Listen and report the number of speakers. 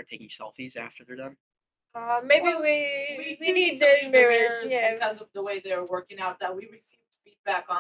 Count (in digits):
3